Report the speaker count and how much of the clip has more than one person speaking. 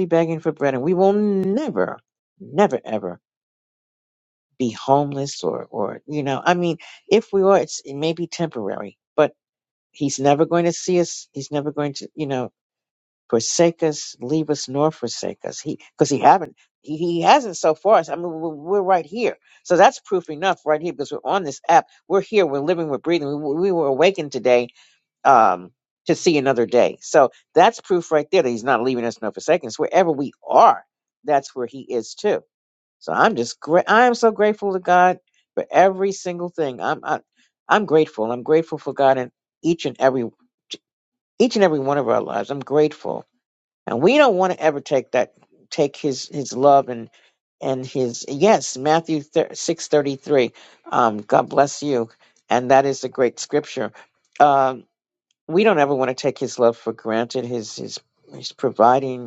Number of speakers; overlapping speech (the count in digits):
1, no overlap